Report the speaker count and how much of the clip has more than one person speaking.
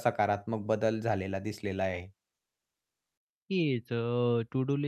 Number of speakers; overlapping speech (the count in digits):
2, no overlap